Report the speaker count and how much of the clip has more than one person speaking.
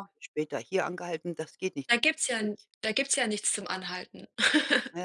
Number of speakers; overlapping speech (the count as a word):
two, no overlap